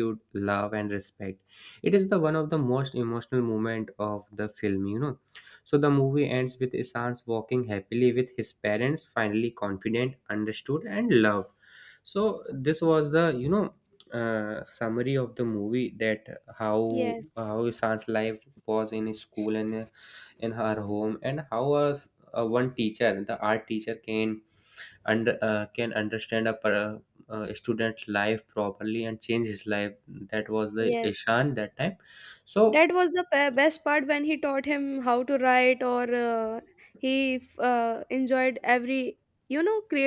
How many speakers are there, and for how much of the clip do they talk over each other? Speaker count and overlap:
2, about 2%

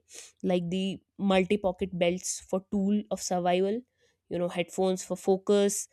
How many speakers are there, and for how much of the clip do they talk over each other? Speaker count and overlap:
1, no overlap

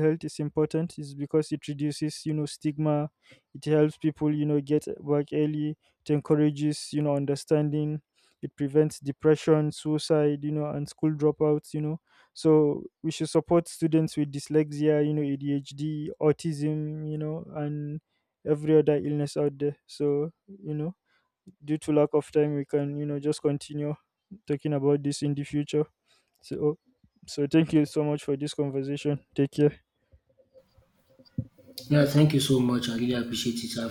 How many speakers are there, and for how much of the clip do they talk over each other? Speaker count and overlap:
2, no overlap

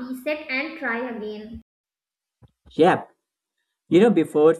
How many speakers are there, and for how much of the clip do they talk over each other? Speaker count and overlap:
2, no overlap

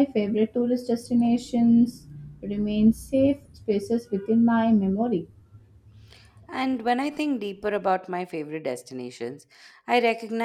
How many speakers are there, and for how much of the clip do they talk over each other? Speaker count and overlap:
2, no overlap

